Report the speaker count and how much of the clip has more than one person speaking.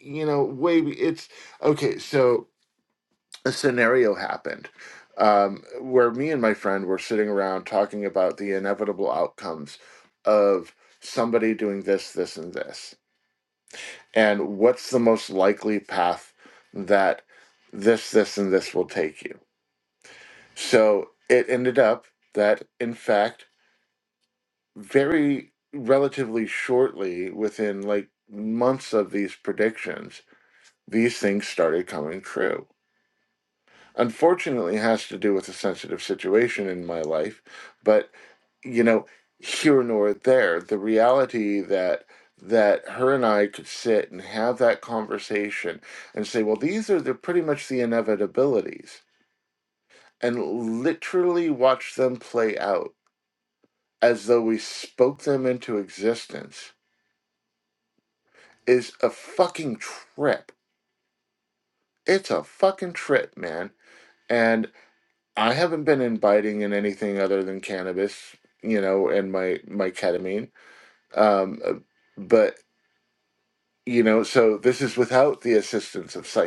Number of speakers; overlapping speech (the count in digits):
1, no overlap